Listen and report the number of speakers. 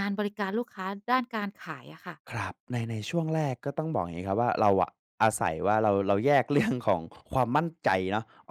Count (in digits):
2